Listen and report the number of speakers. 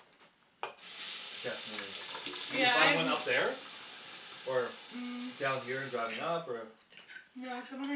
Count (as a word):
two